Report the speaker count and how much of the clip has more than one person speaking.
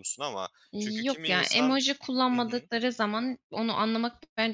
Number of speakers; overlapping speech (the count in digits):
2, about 25%